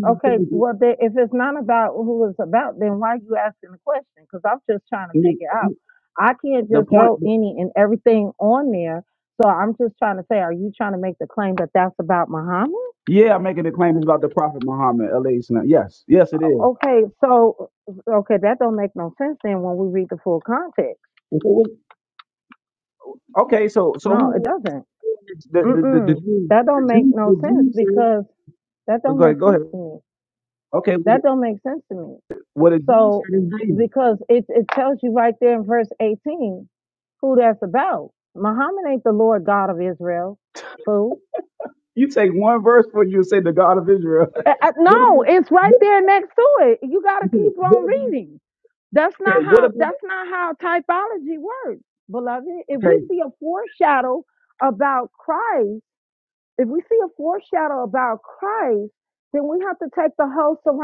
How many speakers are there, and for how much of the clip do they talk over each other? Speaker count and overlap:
2, about 11%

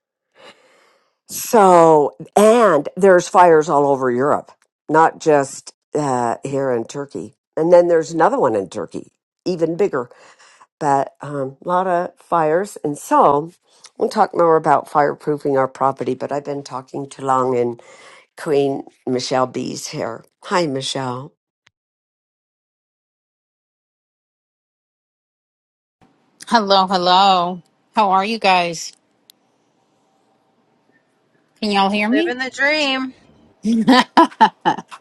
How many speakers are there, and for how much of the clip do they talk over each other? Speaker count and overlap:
3, about 1%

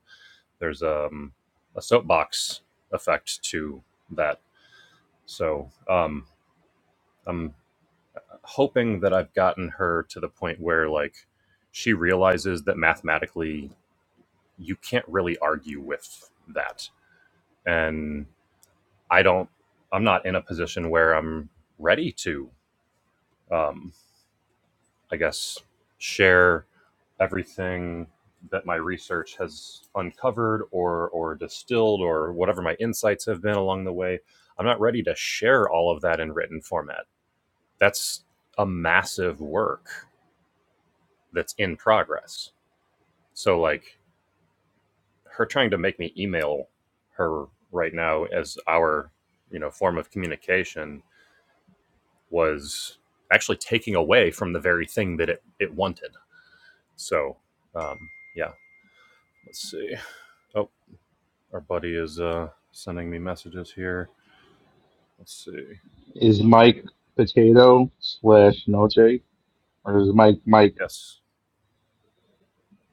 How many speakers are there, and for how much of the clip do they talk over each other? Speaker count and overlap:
2, no overlap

